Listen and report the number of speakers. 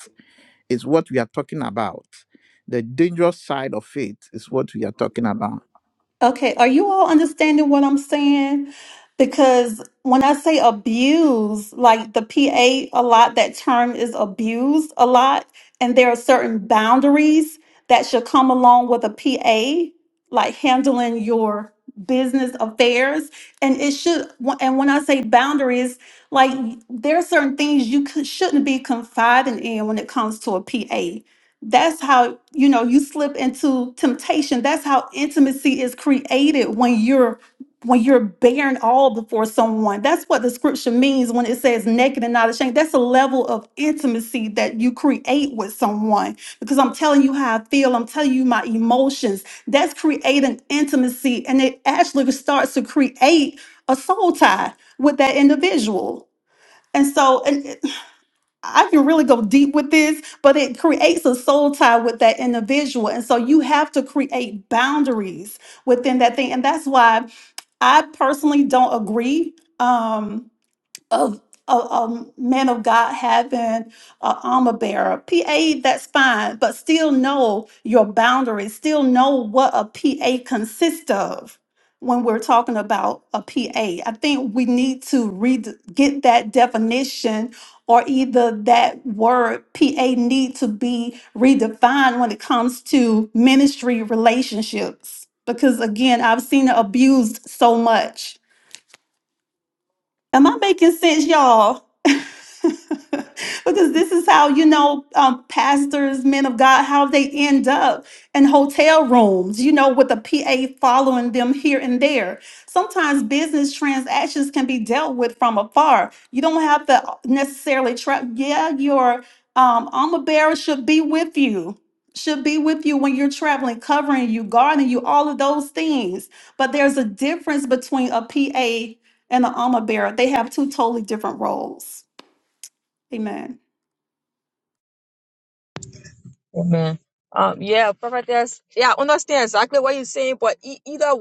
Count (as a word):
three